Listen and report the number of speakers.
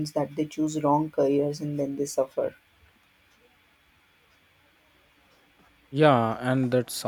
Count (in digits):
2